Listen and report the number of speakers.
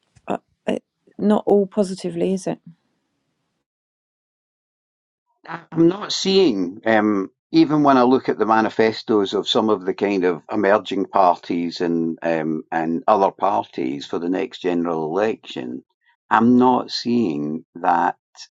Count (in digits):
2